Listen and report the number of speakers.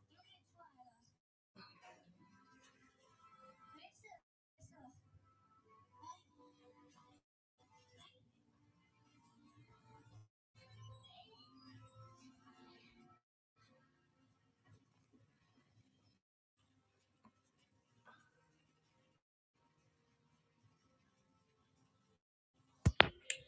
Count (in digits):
0